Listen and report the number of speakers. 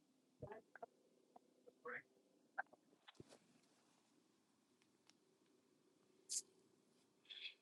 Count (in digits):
0